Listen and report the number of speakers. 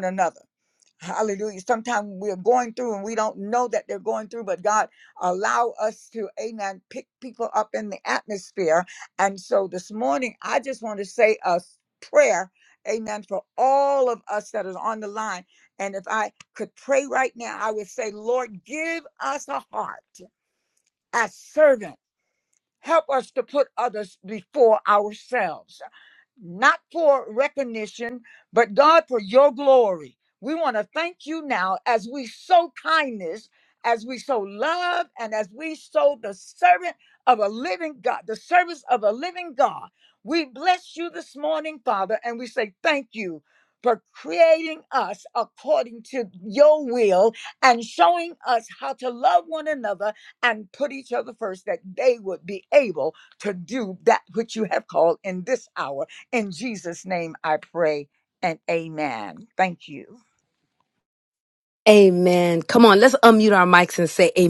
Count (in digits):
2